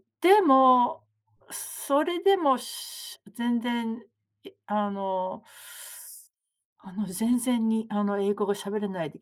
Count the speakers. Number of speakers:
1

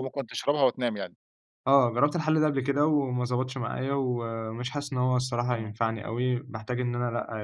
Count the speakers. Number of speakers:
2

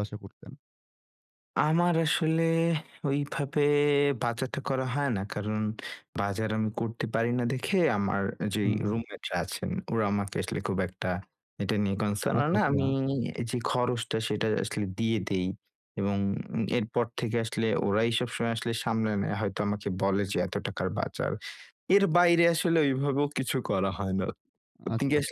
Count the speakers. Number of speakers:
2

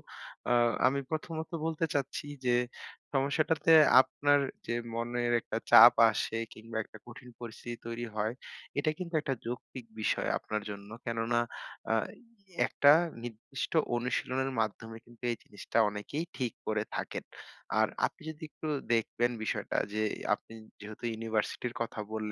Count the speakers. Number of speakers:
1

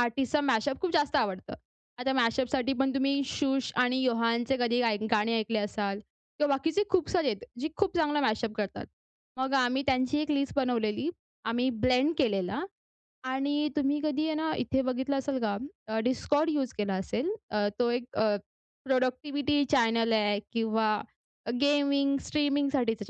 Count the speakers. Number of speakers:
1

